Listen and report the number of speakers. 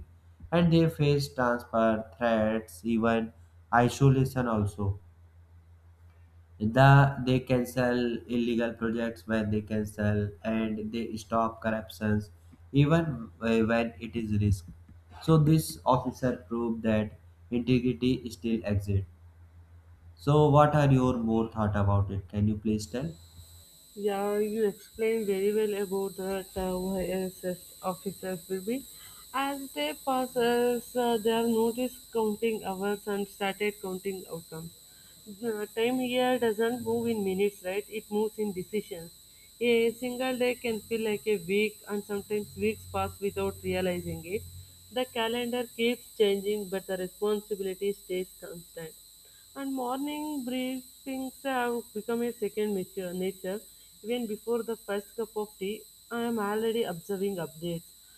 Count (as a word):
two